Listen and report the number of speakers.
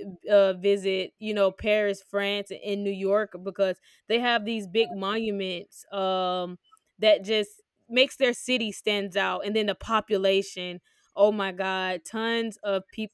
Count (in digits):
1